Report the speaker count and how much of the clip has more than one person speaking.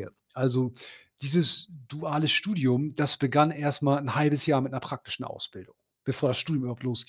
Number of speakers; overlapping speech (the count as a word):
one, no overlap